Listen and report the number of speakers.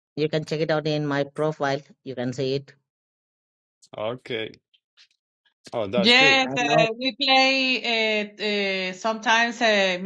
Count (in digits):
3